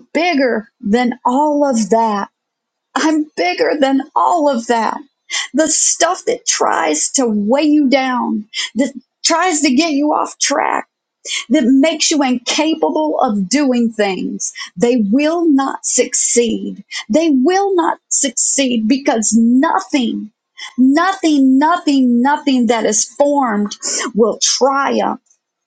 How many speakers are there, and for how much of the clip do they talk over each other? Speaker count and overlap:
1, no overlap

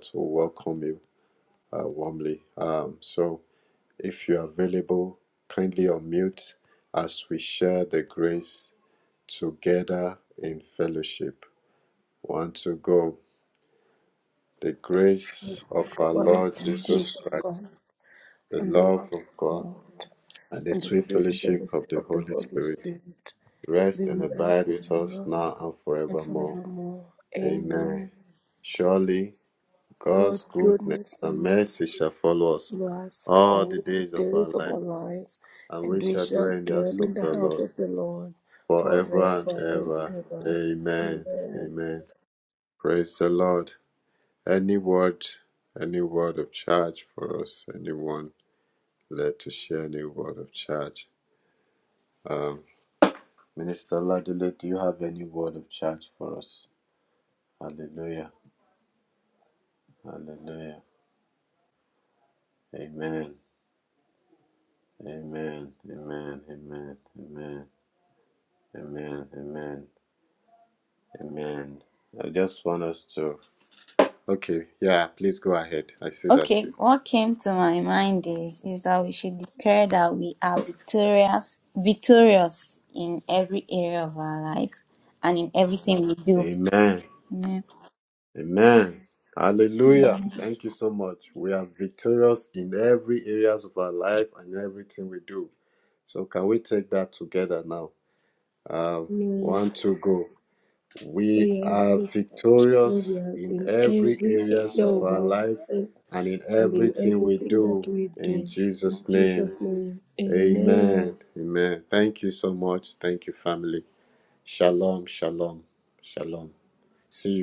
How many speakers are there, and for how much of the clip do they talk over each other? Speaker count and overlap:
3, about 17%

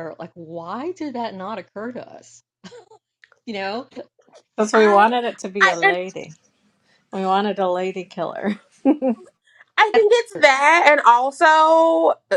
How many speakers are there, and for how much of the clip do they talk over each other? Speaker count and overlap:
3, about 7%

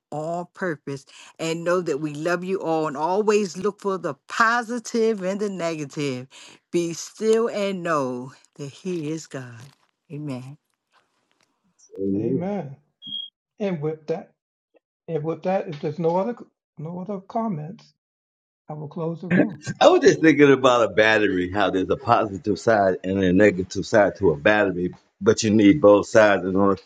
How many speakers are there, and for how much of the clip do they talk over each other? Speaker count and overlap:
3, no overlap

